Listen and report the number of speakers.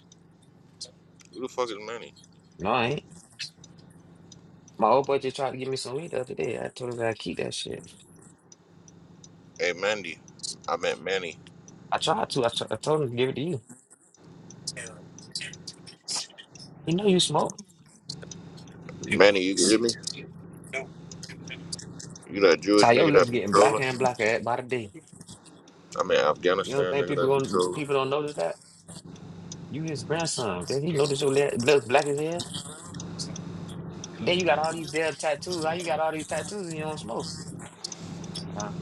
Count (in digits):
2